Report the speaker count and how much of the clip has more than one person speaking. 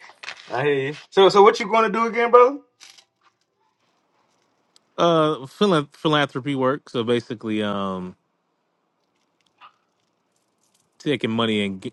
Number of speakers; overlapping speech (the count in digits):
2, no overlap